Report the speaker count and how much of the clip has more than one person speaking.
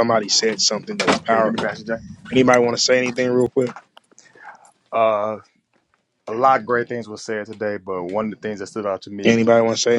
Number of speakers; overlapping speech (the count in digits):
2, about 7%